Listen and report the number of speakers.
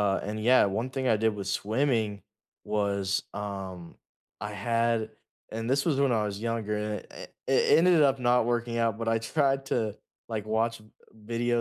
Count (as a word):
one